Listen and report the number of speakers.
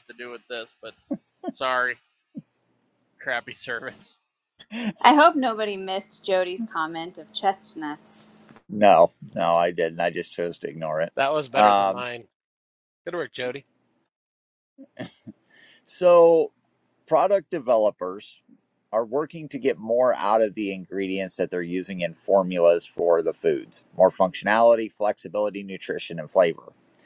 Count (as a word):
four